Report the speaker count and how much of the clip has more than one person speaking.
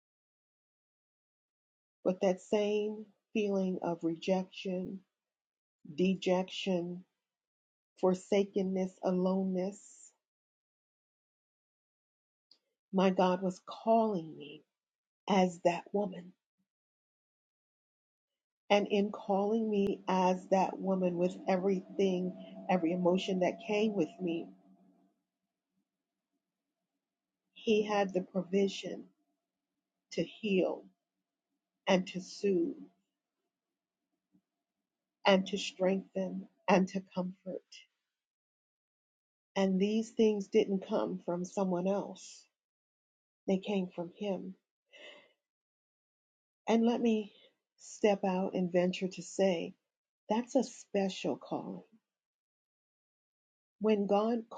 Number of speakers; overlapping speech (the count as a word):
one, no overlap